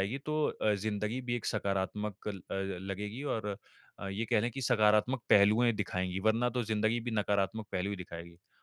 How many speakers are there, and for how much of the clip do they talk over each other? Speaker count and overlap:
1, no overlap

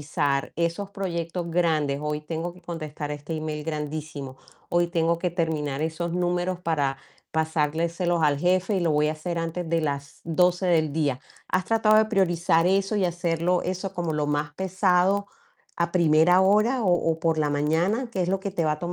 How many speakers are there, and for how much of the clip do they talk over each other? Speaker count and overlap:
1, no overlap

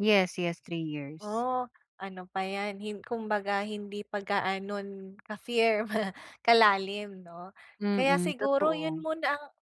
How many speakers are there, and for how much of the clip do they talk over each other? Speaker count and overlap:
2, about 11%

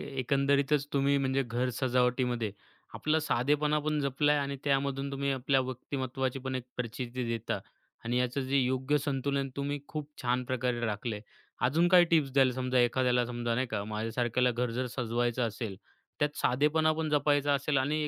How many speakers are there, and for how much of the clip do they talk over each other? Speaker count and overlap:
1, no overlap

